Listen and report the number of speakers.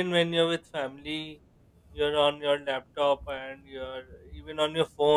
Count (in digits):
1